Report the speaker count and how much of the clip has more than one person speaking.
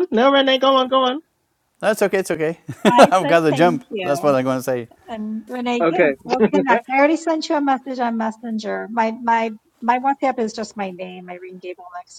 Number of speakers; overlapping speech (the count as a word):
three, about 13%